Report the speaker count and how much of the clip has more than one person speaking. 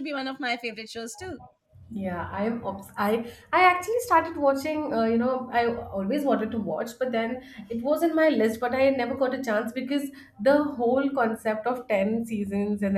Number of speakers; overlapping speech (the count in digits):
2, no overlap